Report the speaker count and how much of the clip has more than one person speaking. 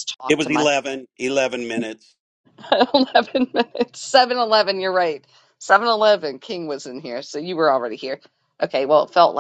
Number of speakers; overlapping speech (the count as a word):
two, about 4%